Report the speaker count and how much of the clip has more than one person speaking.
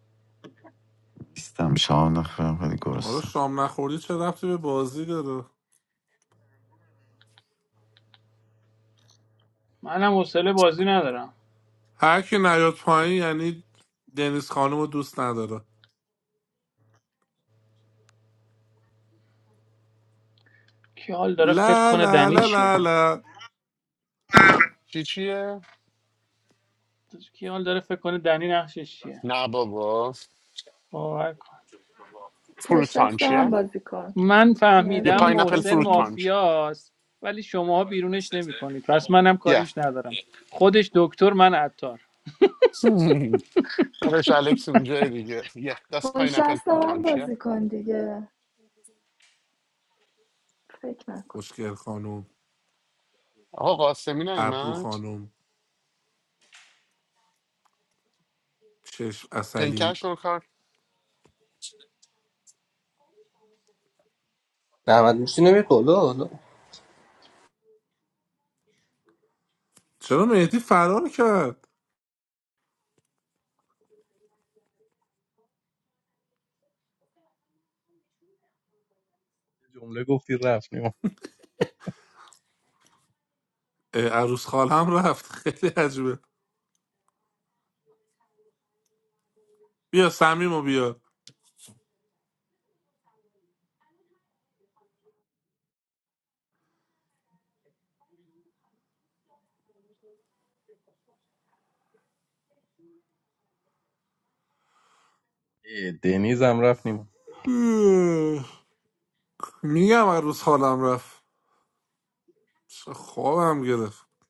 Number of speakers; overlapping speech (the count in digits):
7, about 6%